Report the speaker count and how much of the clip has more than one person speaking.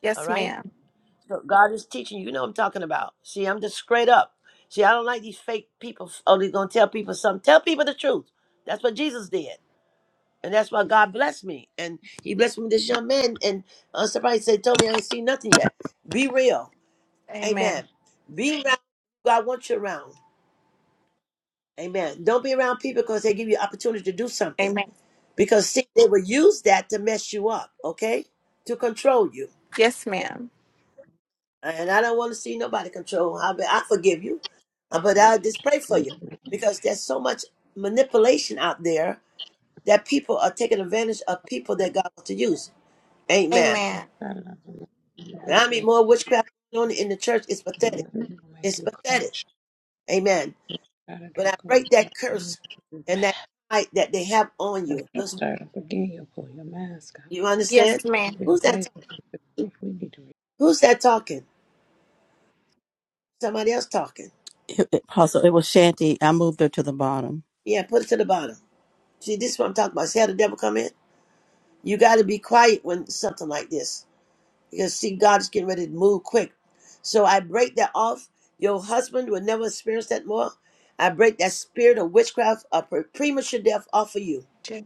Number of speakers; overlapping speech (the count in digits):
4, about 6%